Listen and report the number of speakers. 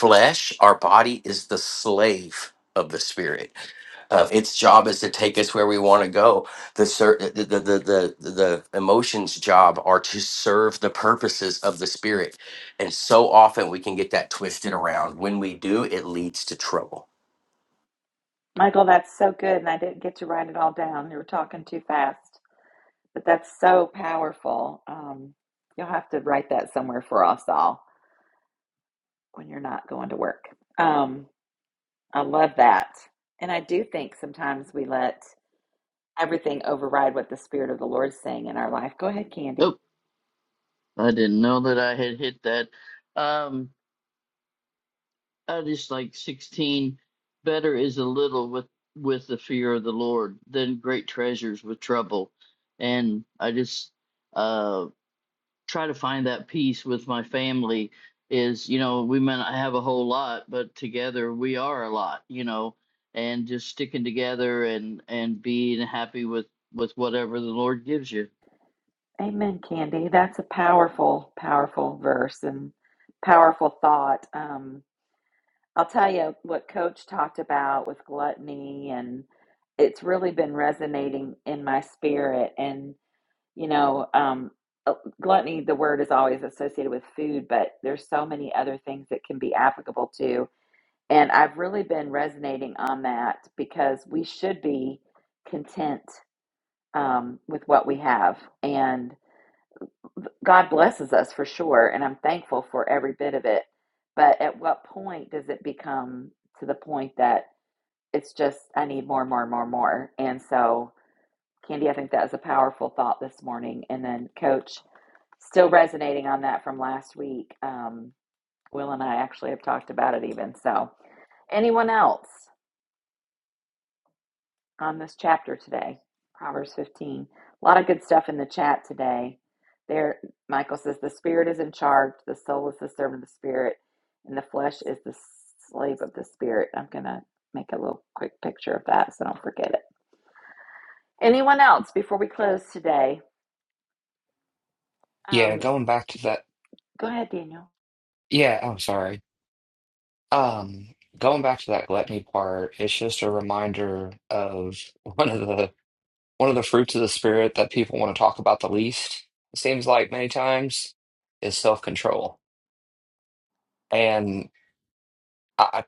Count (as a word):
four